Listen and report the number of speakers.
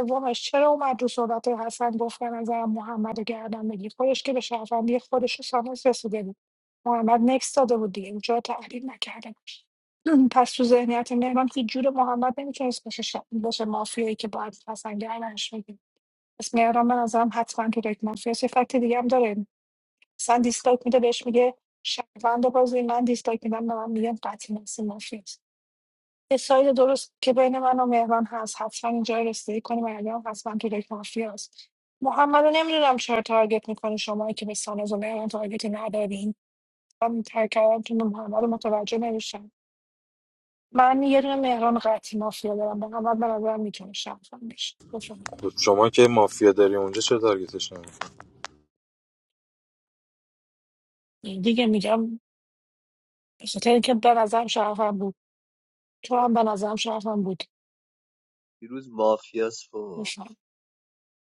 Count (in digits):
3